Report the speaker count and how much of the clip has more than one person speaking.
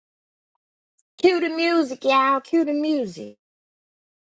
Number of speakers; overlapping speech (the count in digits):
1, no overlap